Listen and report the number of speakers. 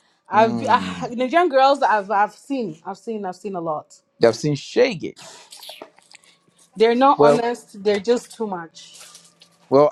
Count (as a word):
two